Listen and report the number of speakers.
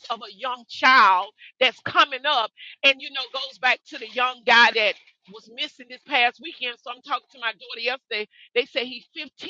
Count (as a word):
one